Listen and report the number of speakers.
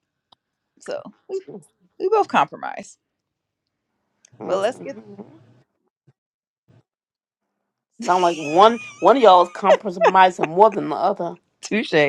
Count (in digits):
2